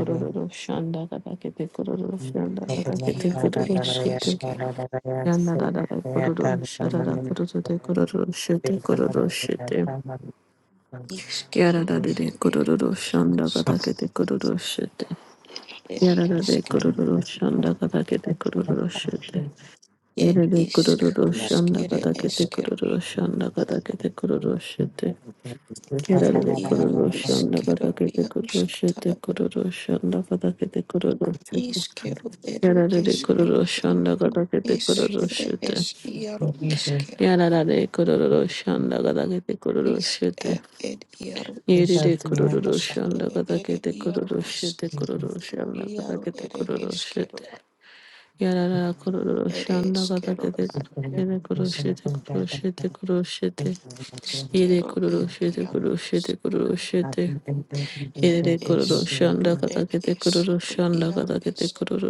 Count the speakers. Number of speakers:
three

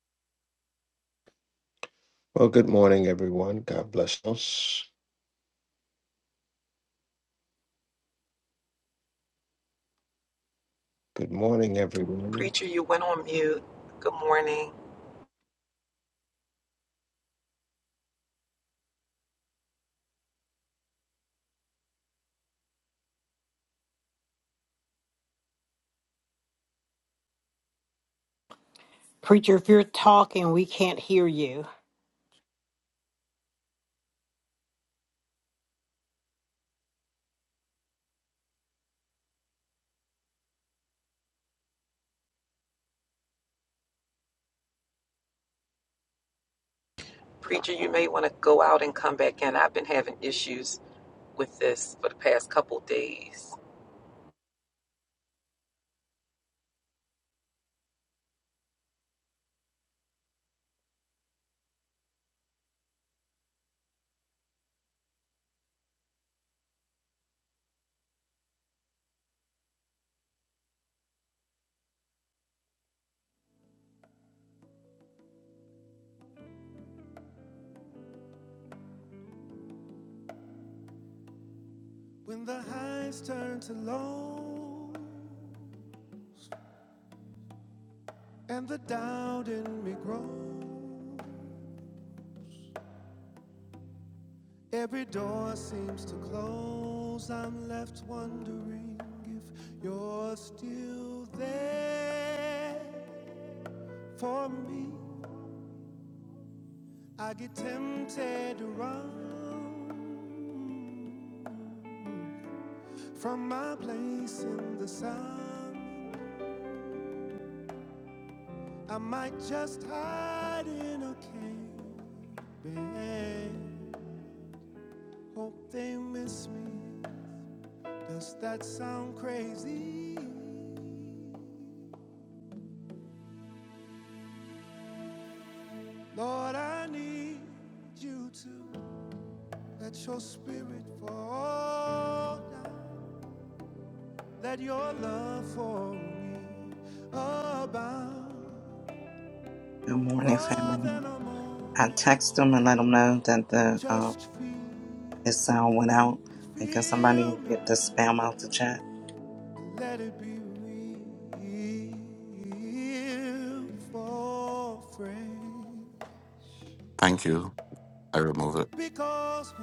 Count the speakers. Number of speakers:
six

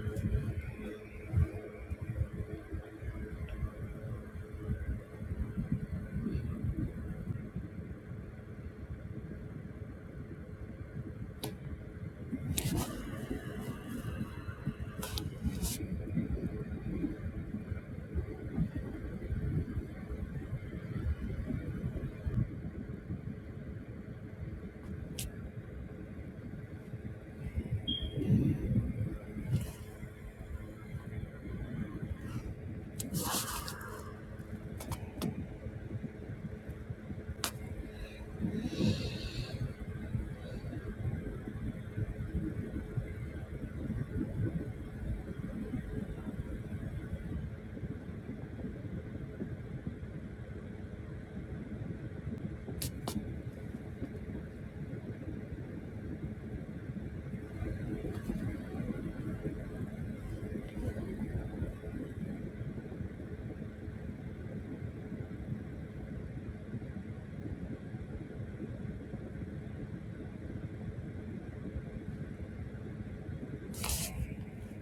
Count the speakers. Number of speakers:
zero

